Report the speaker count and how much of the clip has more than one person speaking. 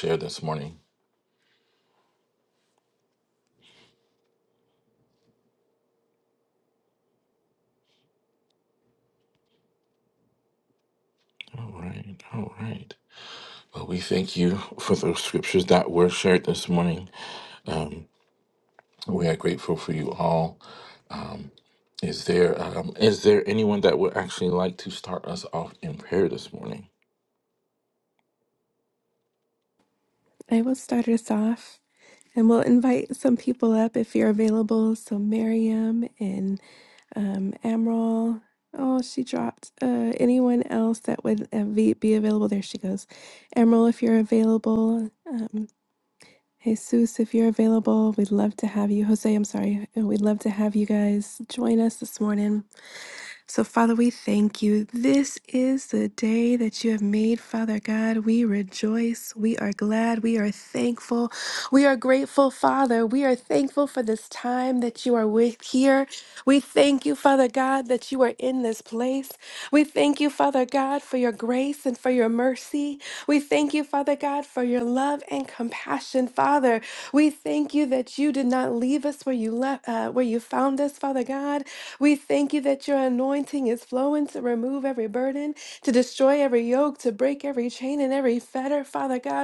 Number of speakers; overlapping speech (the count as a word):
two, no overlap